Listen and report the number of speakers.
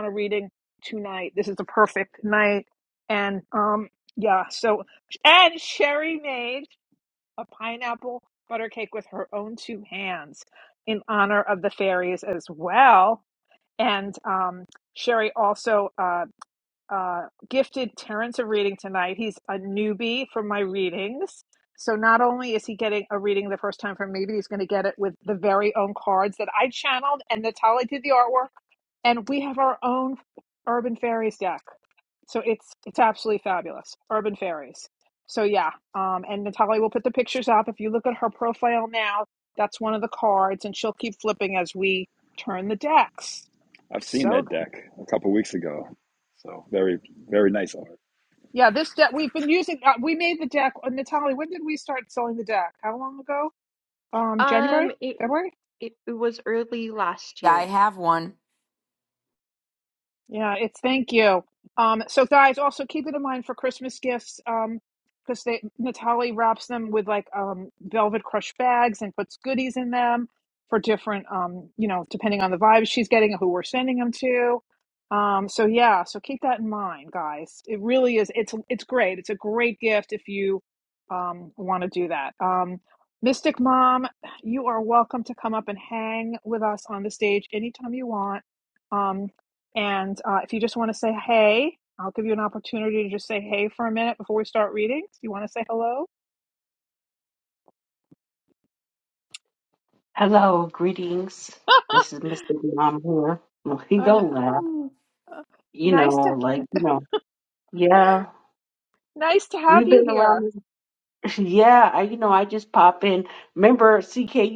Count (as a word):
five